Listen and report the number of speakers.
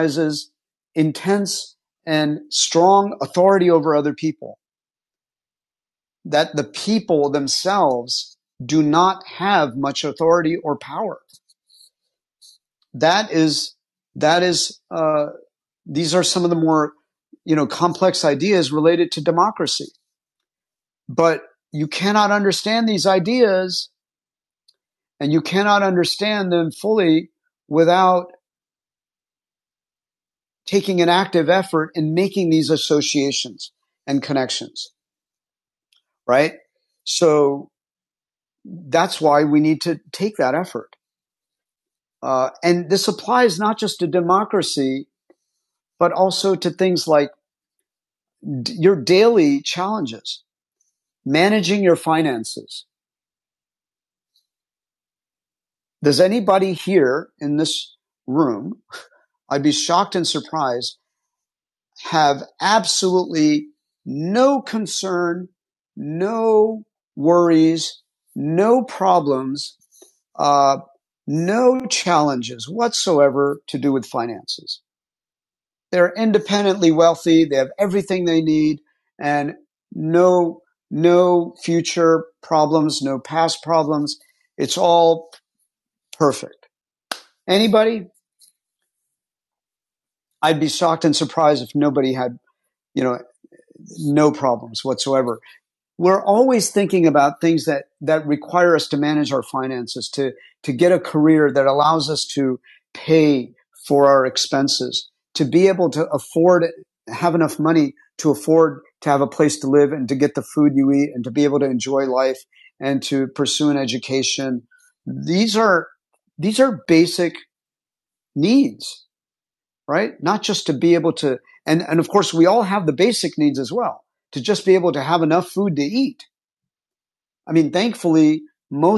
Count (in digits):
1